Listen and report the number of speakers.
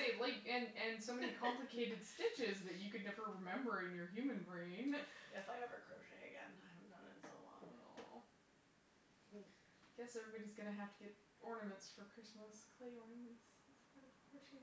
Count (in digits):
2